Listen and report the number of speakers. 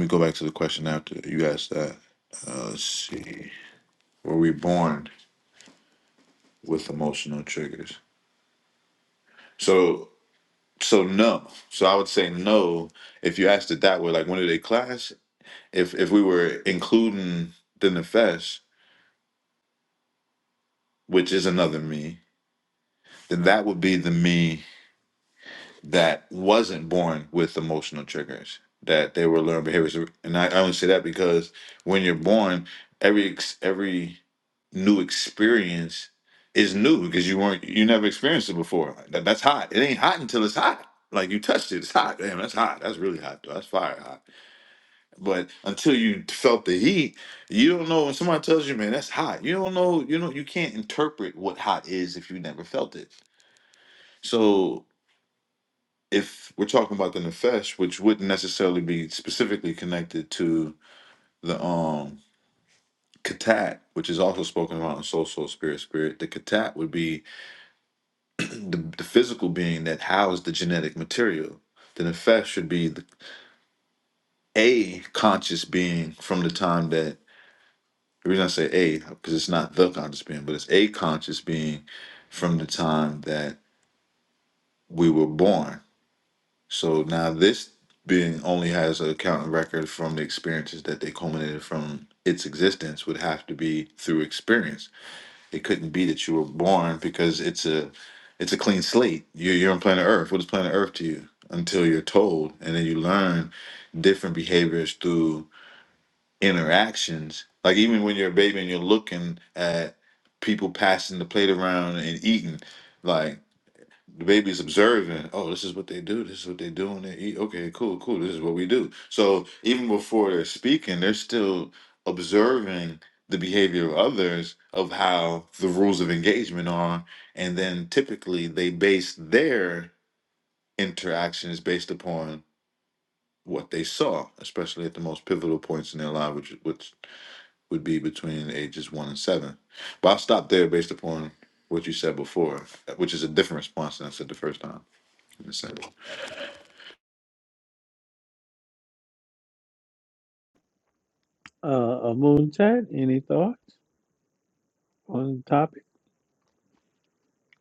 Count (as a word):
two